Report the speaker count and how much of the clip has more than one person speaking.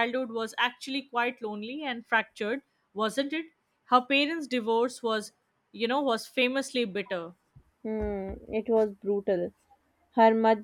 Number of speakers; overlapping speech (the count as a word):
two, no overlap